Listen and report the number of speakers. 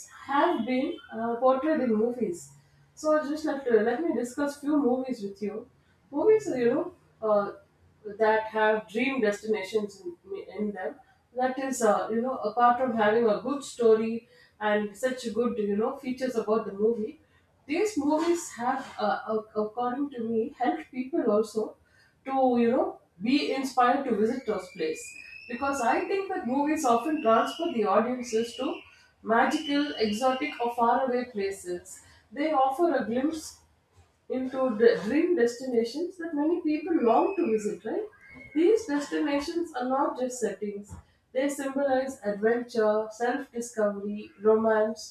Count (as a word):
one